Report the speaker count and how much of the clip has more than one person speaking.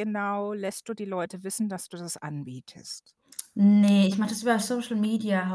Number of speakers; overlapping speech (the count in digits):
2, no overlap